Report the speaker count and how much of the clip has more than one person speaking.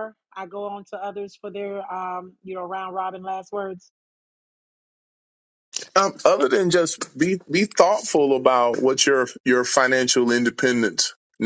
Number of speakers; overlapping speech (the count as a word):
two, no overlap